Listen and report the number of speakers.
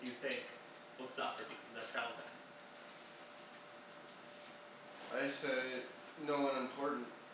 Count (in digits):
2